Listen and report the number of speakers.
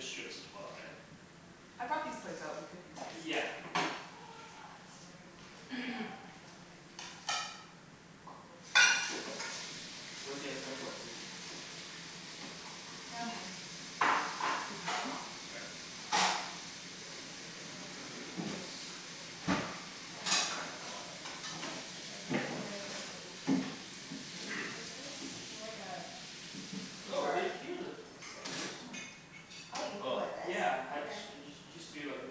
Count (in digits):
4